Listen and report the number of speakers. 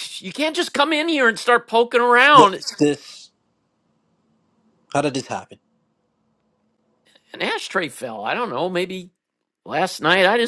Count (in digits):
2